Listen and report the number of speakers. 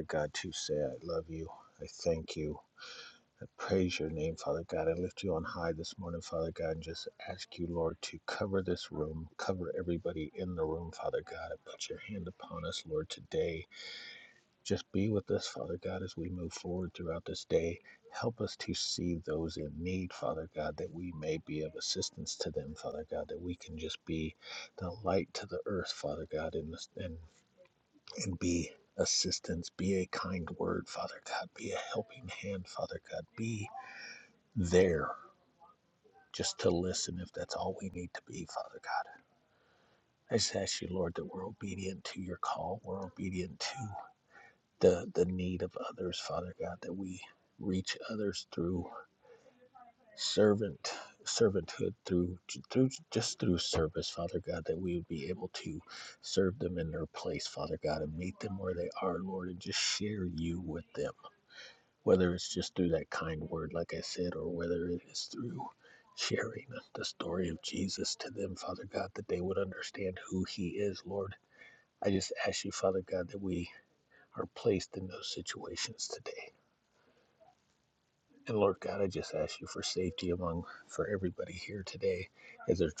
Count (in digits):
1